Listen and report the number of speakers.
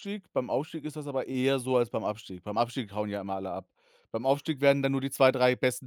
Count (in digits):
1